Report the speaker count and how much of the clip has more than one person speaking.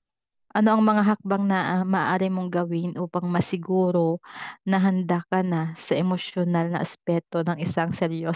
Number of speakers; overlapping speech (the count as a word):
one, no overlap